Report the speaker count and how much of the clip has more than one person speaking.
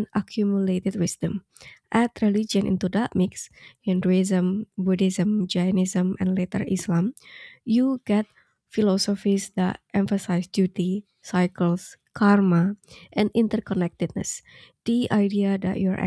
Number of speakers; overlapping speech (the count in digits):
1, no overlap